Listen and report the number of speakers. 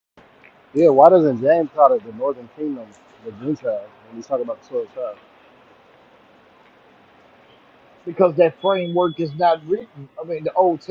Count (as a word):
two